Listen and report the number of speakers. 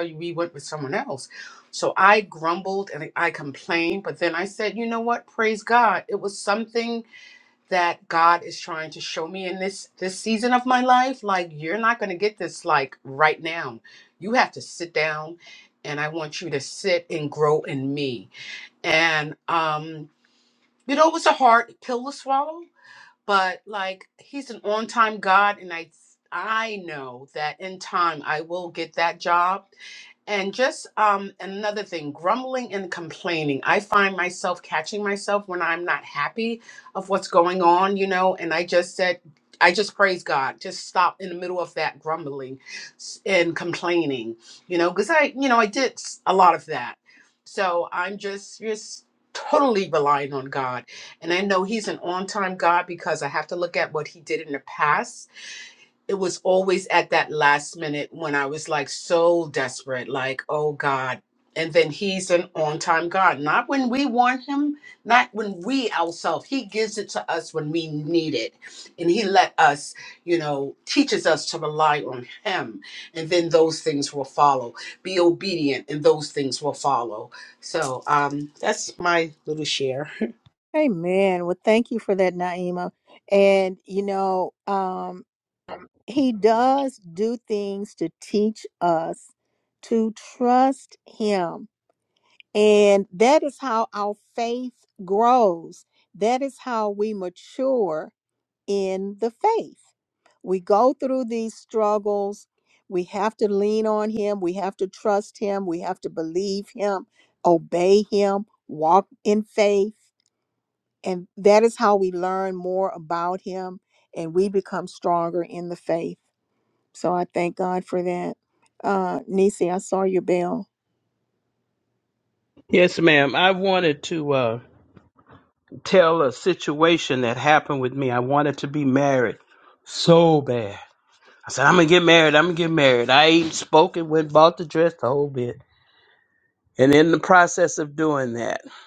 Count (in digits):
3